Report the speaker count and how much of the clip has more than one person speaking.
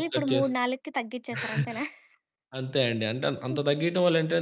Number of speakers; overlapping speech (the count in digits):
2, about 15%